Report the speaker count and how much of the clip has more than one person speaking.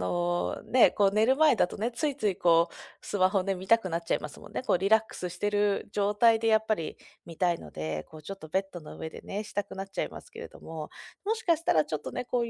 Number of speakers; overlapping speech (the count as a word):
one, no overlap